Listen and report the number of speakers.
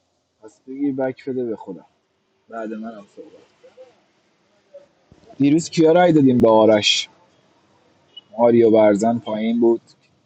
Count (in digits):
1